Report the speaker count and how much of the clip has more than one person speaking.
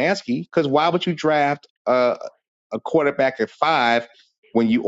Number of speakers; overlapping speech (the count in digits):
1, no overlap